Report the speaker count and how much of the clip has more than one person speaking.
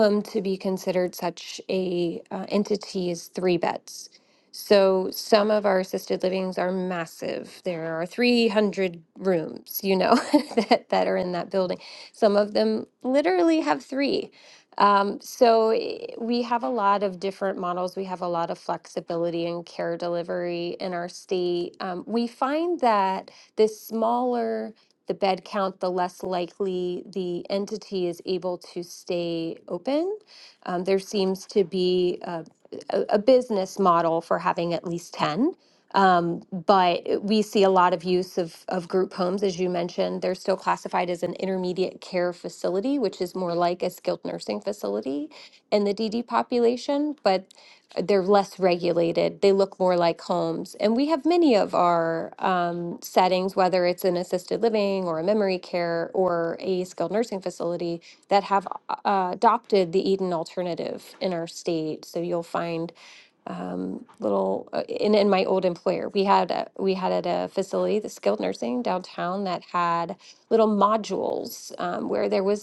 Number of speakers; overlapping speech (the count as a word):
one, no overlap